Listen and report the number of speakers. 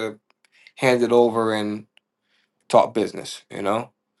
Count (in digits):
1